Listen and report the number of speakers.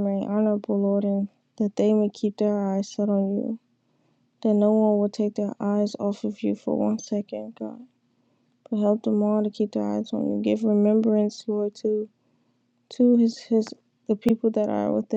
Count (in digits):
1